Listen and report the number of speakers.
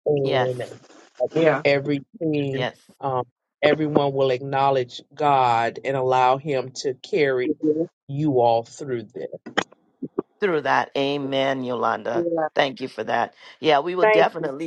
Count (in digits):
3